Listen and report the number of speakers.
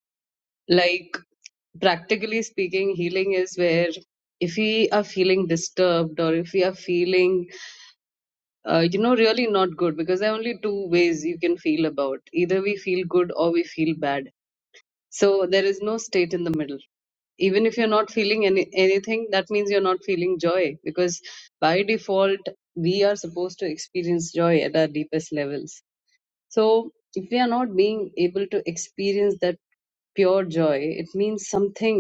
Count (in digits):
1